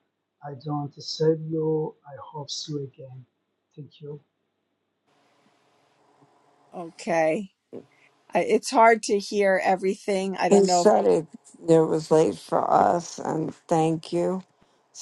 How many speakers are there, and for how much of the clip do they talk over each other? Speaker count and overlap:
3, about 2%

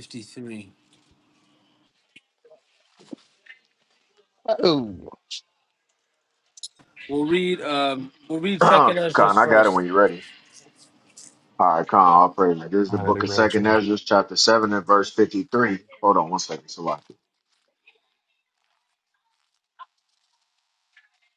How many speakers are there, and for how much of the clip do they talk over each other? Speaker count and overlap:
3, about 9%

